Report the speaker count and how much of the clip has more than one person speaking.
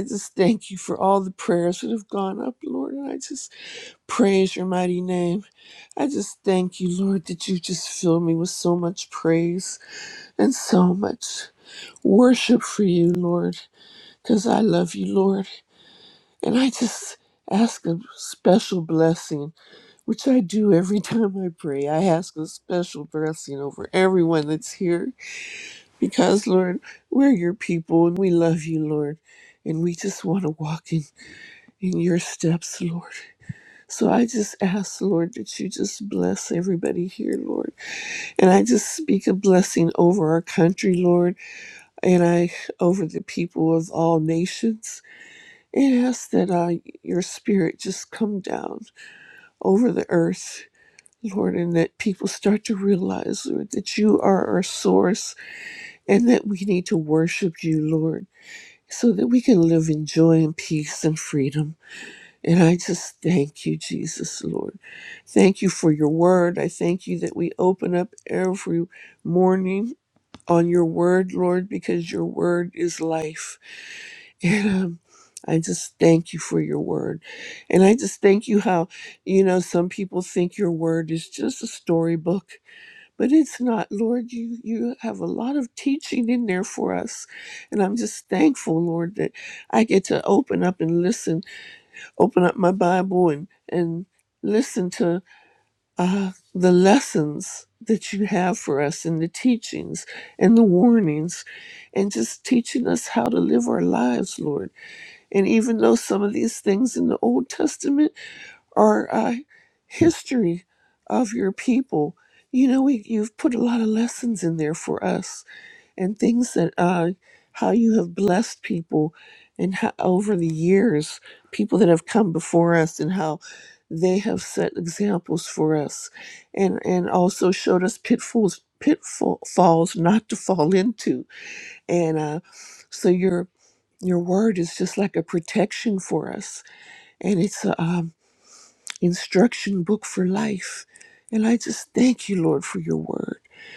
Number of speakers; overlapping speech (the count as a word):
one, no overlap